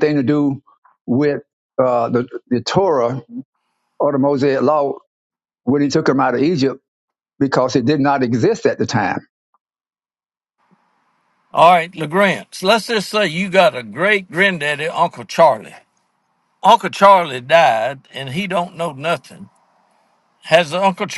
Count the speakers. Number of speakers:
2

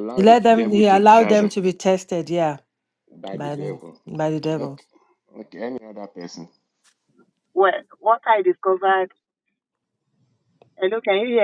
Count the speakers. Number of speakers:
3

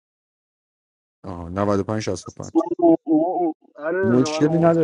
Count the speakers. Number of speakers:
2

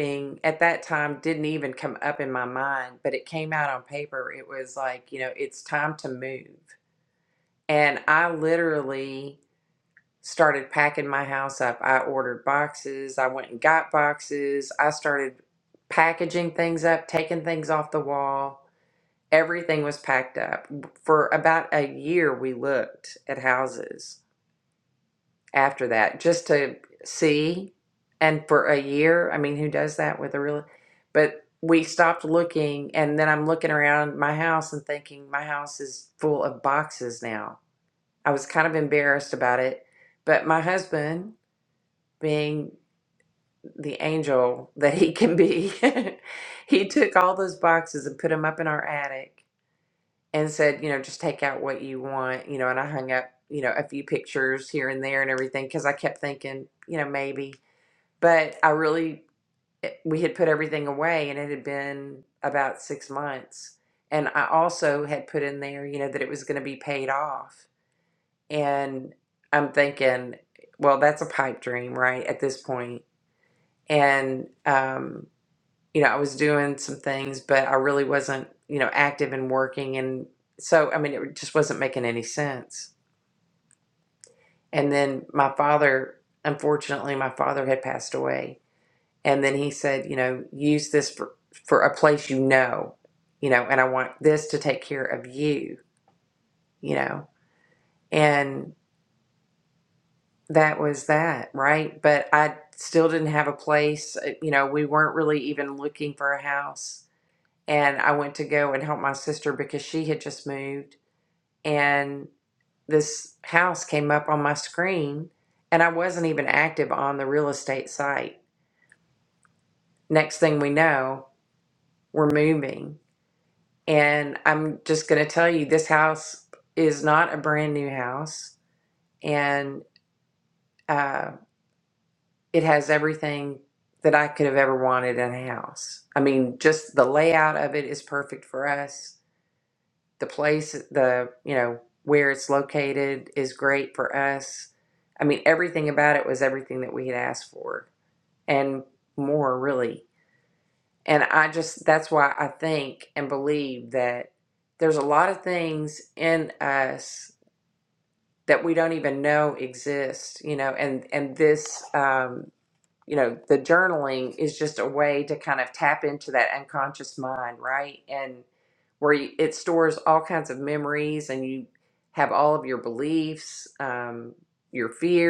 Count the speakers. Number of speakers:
1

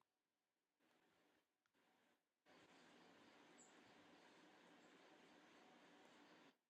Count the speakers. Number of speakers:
0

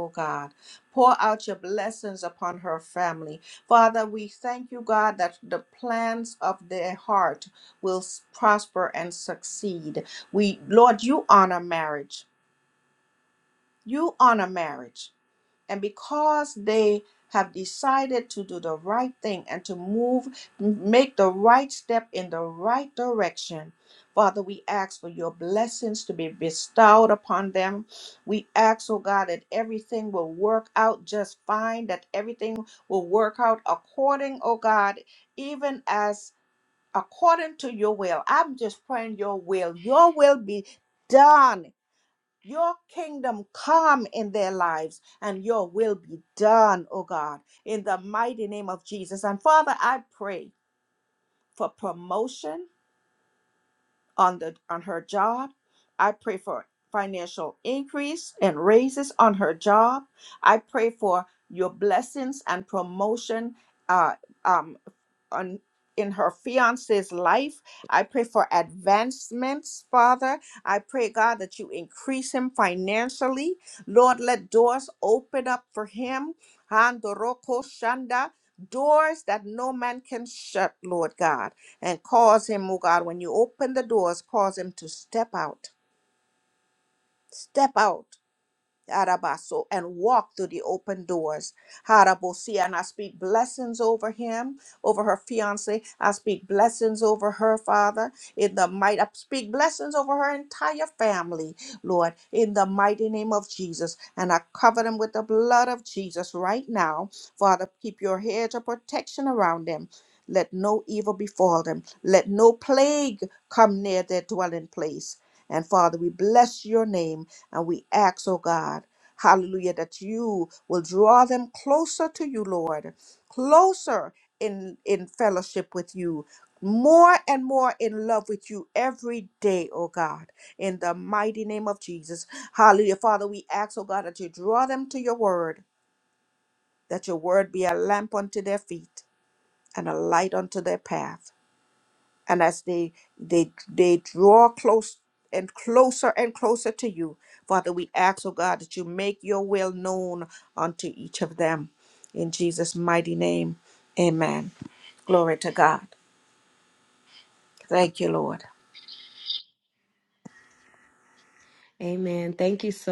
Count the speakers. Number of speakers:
2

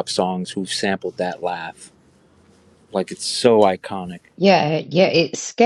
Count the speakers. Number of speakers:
2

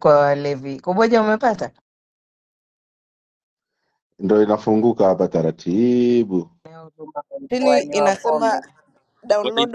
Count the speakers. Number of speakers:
3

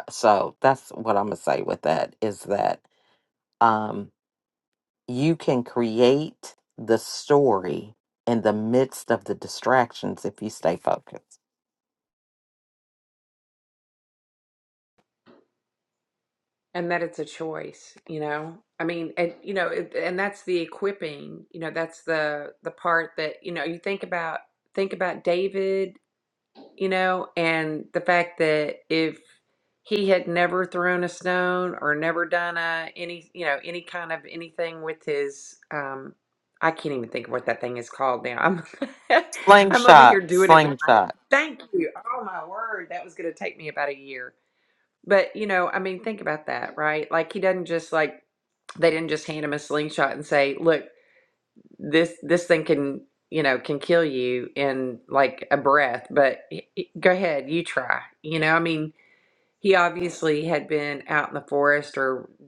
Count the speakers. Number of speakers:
2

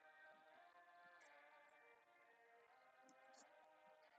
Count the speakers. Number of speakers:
0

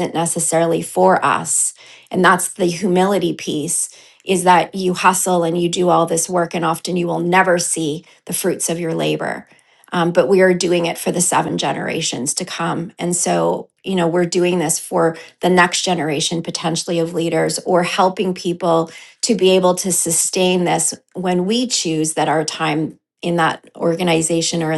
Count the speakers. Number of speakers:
1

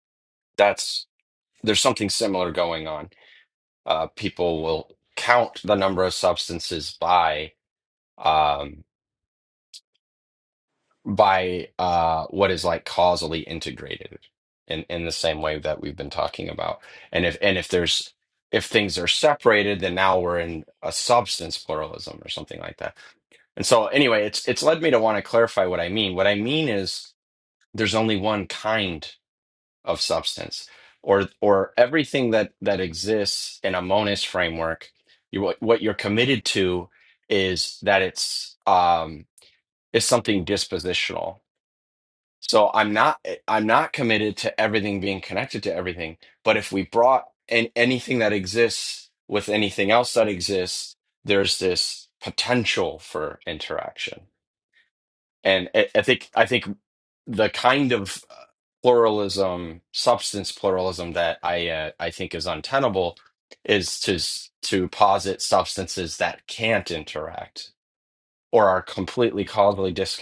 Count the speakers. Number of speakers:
1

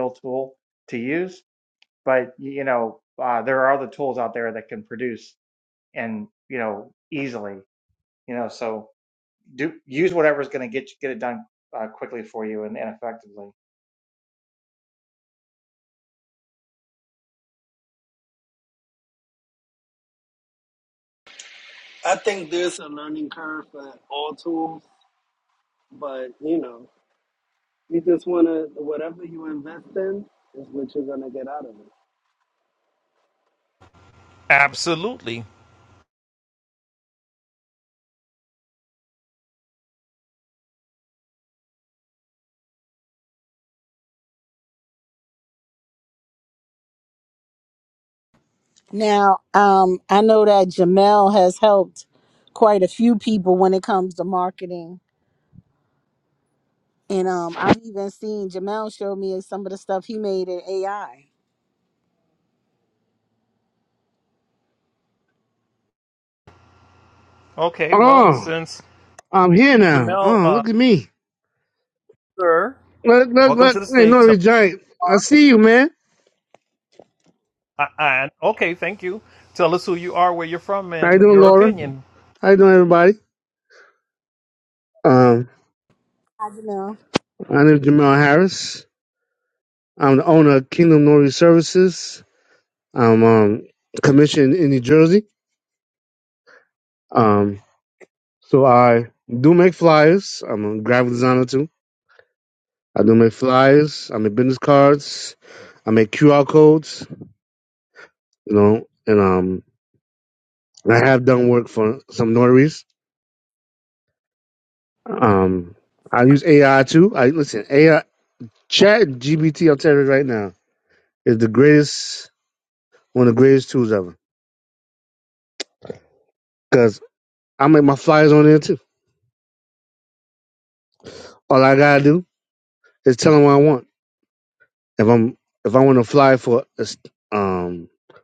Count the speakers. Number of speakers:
5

